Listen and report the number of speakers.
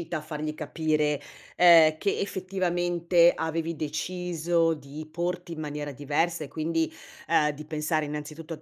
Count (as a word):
one